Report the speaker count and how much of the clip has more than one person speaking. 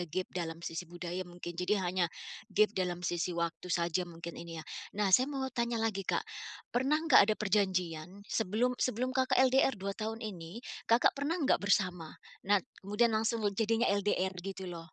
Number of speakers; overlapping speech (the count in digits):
1, no overlap